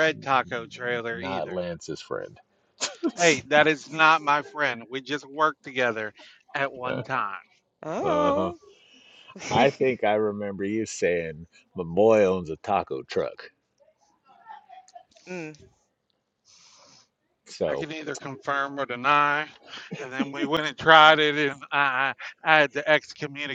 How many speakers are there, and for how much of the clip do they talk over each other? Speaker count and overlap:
three, about 5%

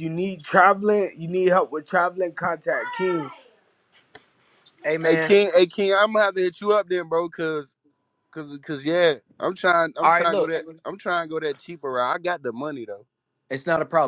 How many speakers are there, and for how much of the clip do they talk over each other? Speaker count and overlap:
three, about 6%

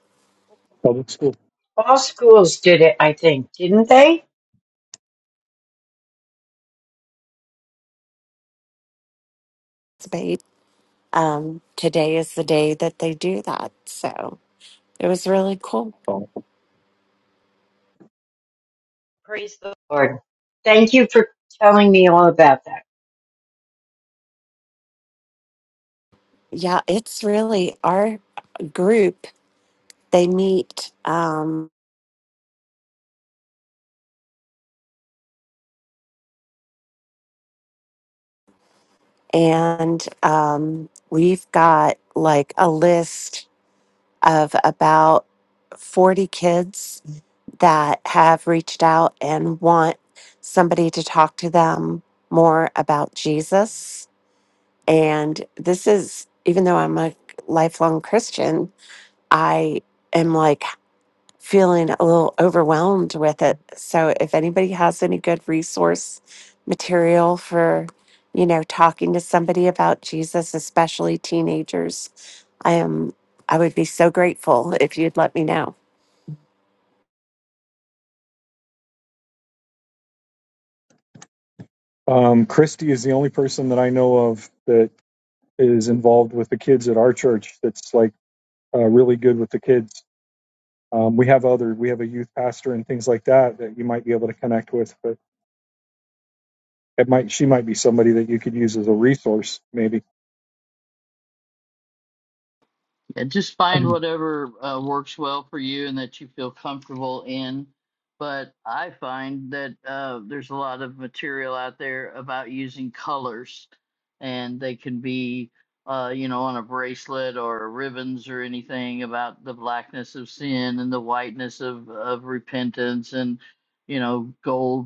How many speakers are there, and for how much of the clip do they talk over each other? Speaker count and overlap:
four, under 1%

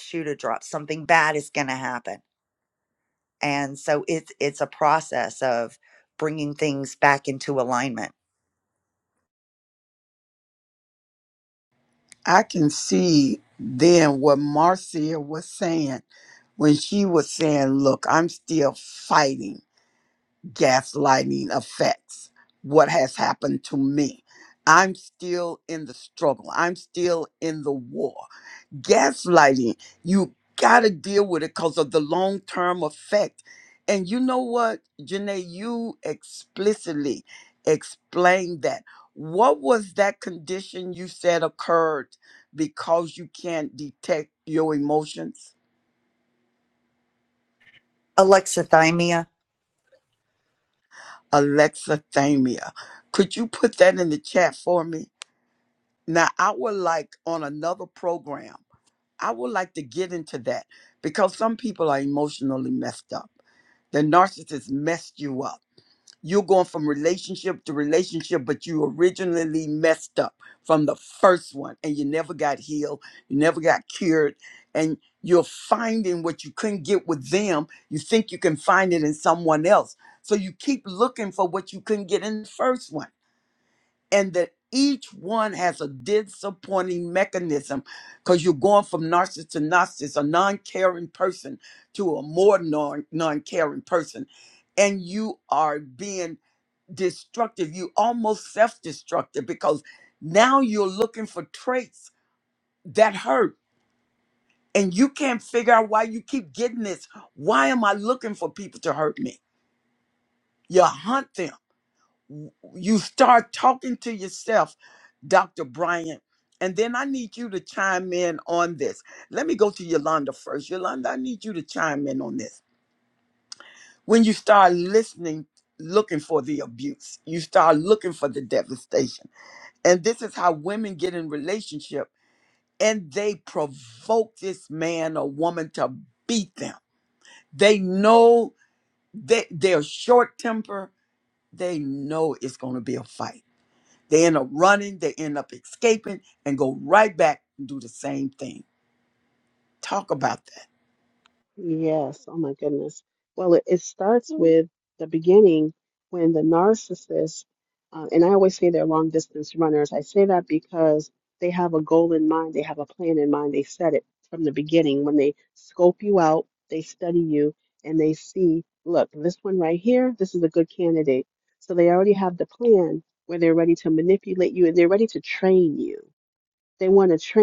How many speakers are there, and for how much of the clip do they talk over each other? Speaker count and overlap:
three, no overlap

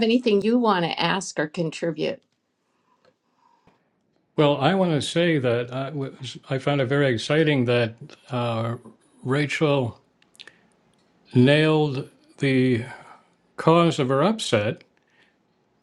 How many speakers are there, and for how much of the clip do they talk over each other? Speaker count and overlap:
two, no overlap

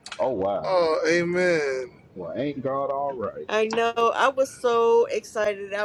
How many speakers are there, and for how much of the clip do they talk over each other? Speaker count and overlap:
three, about 3%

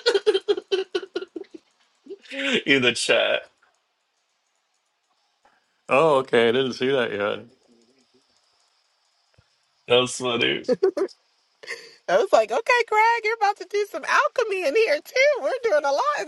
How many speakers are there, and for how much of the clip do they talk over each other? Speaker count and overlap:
three, no overlap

